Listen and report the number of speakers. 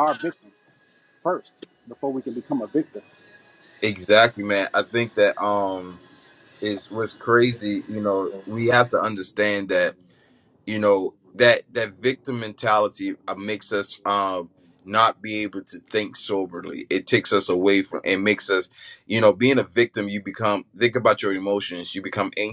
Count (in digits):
2